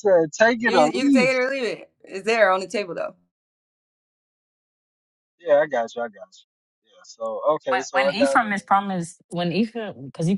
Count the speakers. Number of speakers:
3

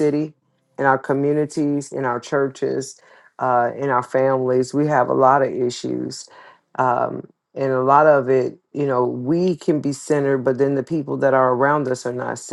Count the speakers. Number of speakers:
1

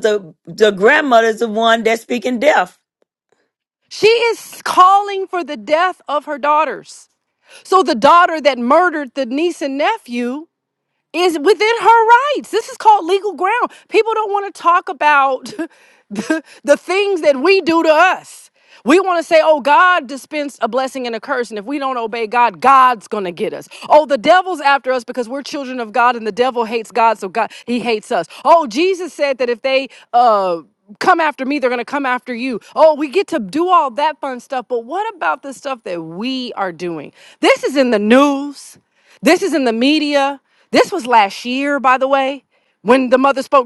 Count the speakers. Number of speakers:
2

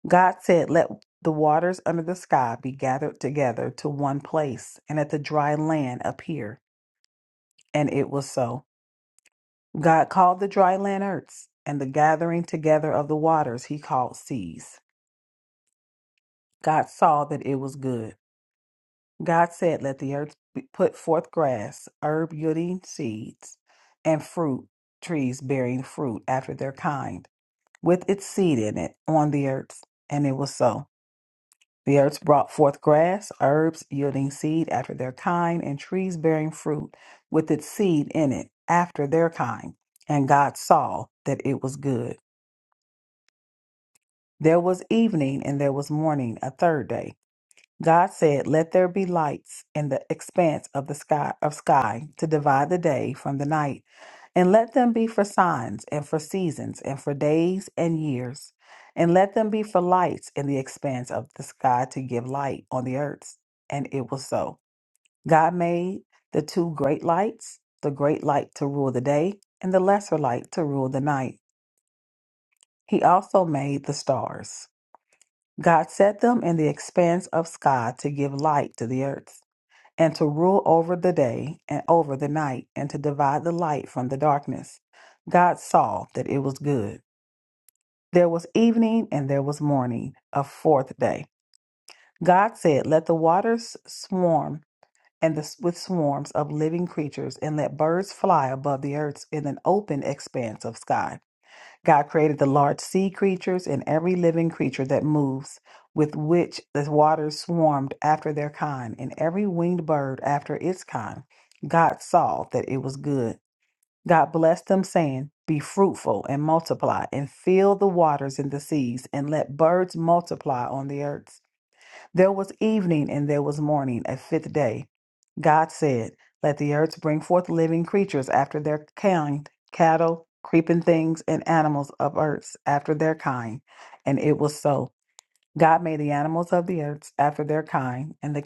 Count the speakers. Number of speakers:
1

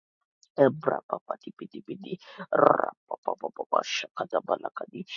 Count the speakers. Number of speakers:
1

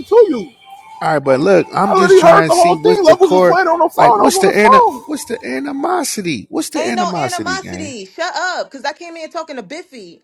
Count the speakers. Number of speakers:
3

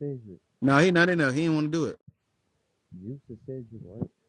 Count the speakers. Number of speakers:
2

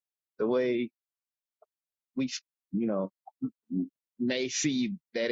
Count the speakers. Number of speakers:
1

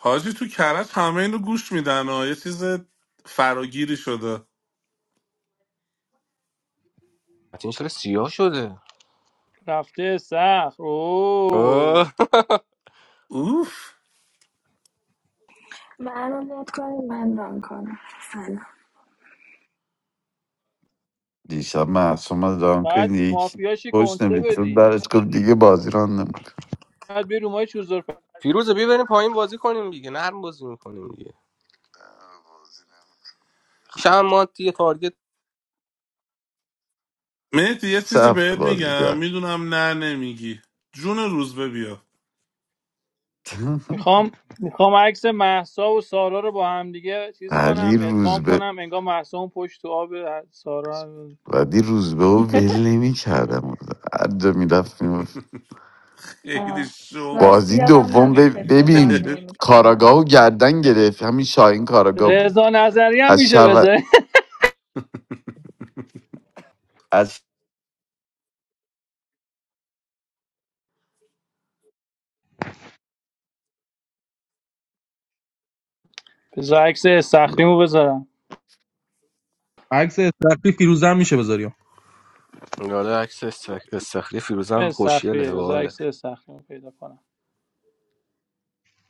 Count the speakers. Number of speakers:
6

